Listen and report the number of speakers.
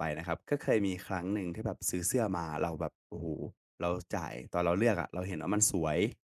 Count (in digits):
1